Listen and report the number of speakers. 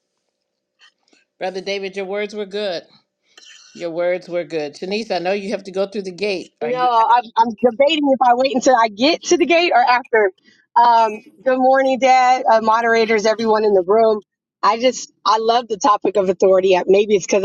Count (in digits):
2